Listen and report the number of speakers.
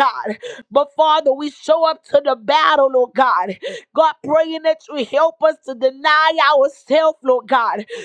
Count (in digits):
1